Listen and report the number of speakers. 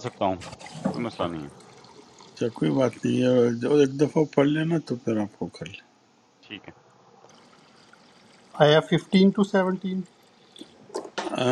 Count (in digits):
3